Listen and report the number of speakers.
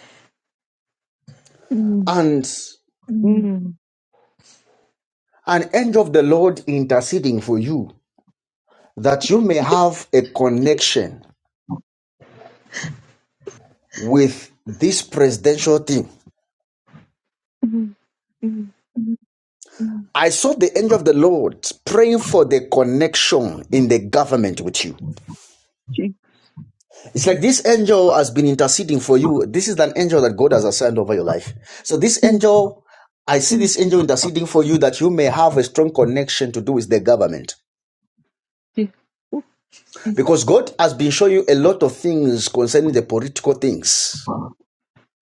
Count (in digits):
2